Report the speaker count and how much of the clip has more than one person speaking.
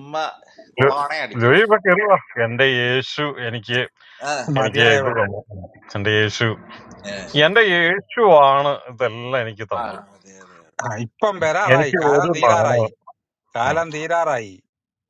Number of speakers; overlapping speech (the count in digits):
3, about 16%